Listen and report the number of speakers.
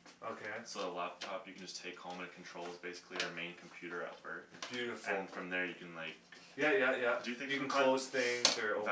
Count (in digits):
2